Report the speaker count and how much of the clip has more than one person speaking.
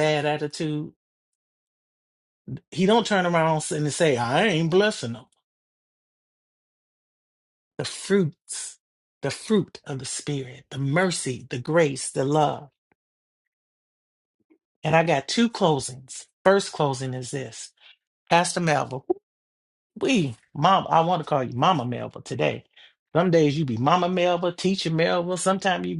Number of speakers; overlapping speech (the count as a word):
one, no overlap